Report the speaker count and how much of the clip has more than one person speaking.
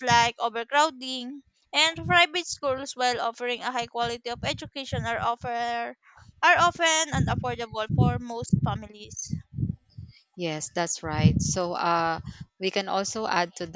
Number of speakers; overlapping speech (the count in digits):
2, no overlap